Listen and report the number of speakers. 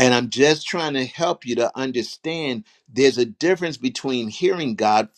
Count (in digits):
1